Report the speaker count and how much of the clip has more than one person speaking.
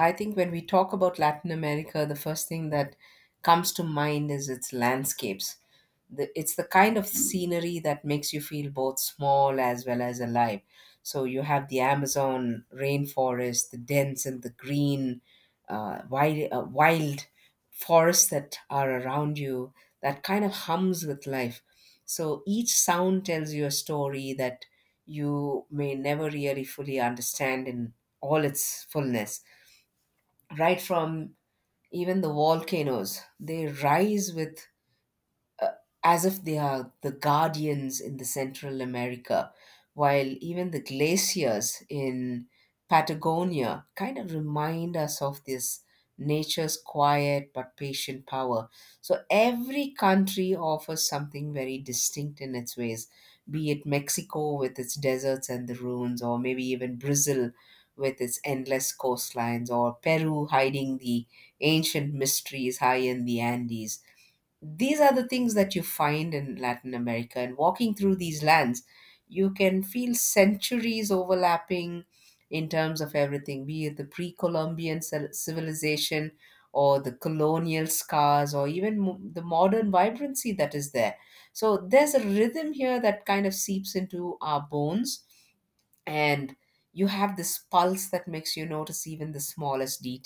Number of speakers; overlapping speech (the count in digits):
1, no overlap